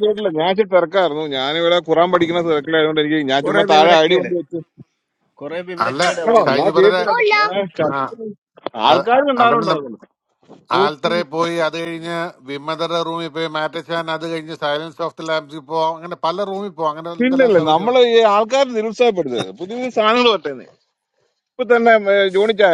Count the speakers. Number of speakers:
3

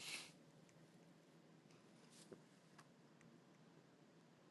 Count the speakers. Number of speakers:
0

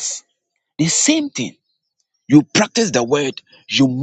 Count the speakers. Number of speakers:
1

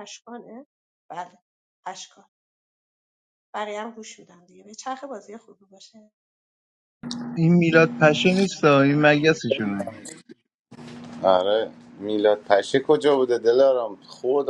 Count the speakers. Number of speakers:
3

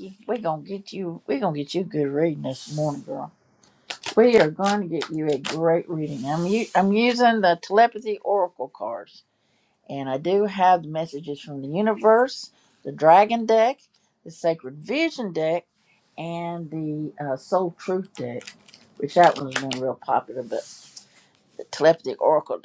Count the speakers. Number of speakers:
1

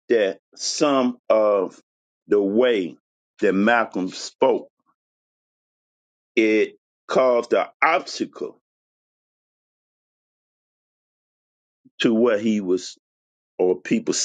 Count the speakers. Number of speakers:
1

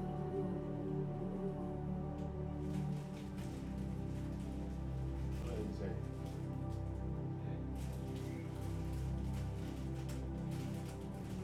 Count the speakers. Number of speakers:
0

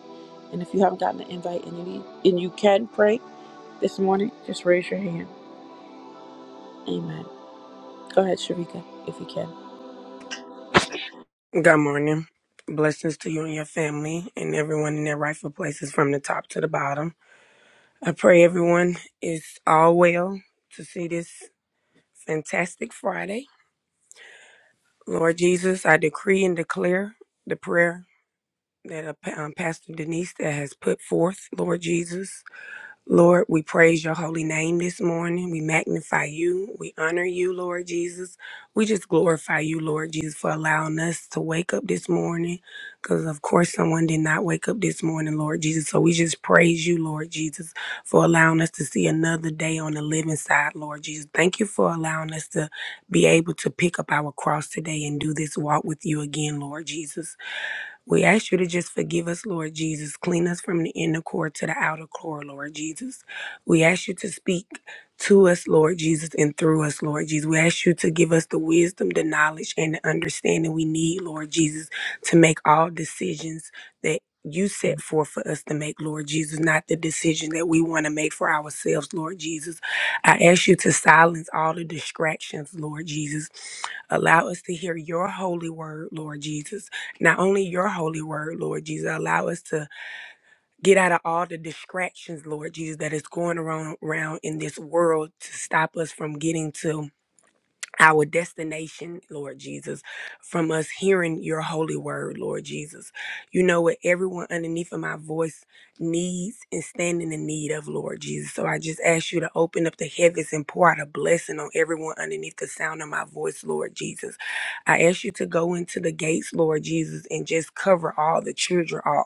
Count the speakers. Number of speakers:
2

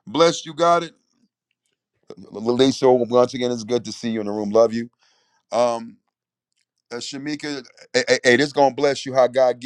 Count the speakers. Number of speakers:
1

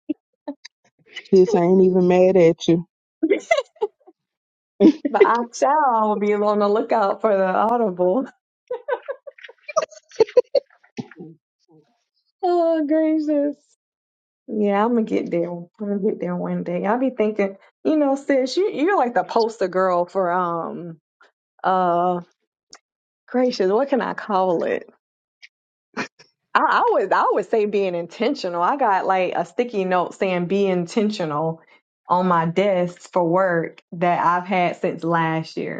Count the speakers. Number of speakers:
2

